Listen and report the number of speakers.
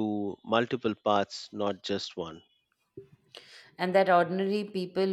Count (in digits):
2